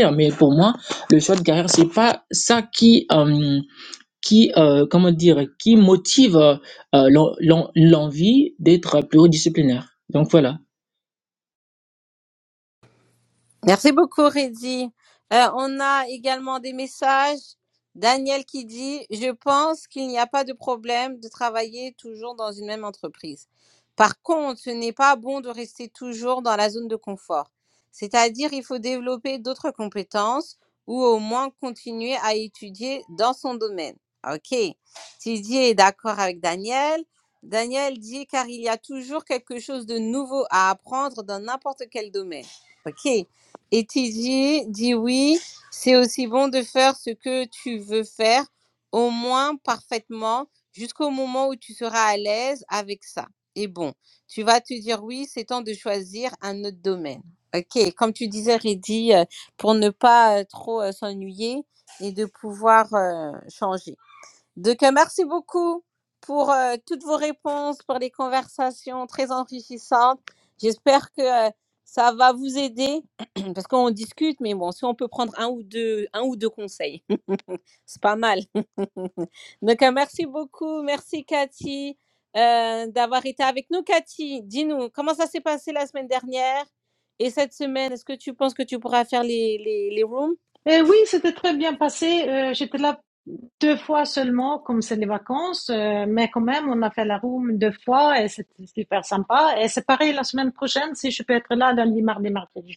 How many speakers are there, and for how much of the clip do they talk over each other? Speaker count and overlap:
3, no overlap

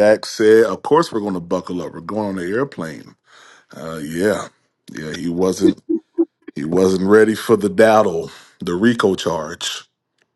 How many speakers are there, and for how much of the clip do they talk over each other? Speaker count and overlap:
1, no overlap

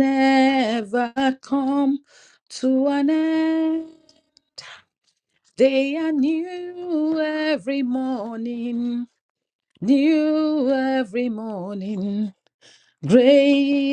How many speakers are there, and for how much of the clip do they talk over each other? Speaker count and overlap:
1, no overlap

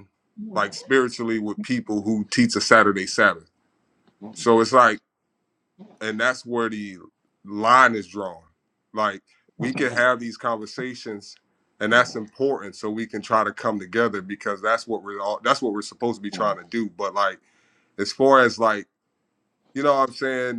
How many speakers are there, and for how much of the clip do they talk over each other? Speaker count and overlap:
1, no overlap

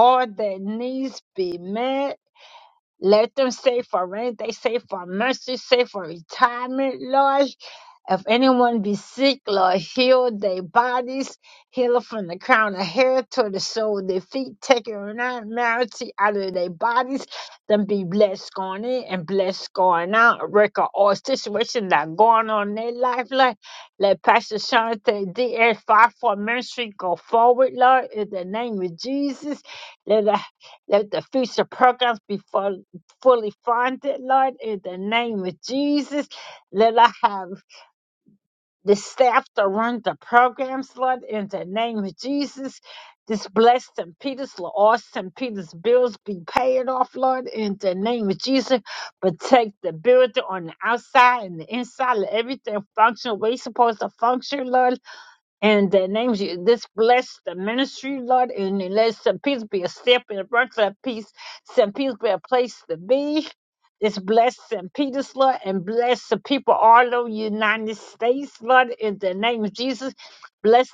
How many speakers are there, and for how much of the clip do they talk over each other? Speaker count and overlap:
1, no overlap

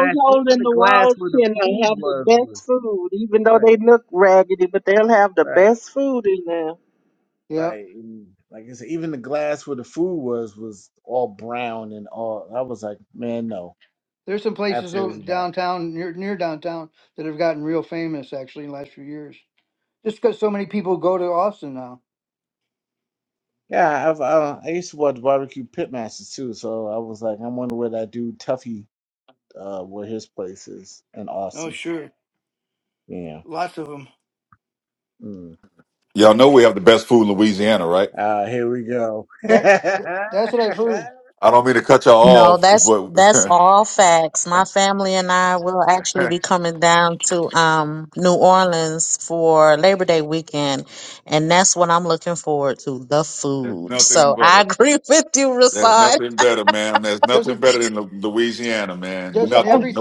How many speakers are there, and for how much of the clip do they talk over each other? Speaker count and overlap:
5, about 12%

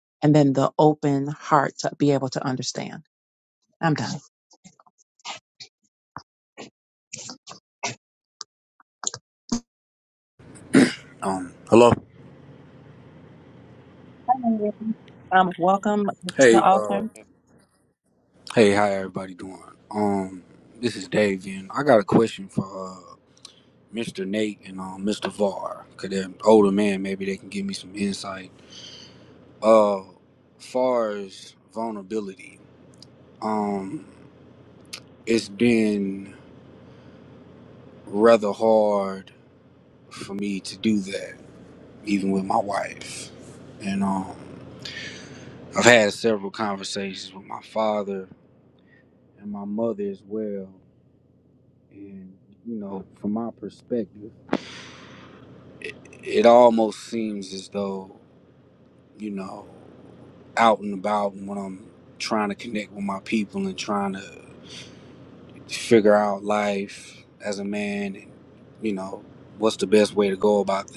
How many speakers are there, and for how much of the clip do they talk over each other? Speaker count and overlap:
2, about 1%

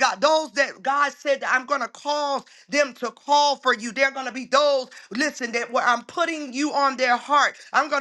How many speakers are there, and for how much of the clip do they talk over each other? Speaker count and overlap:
1, no overlap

